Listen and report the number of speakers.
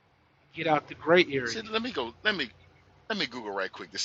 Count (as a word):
two